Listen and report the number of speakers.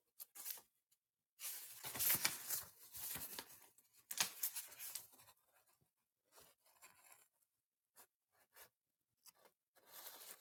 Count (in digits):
0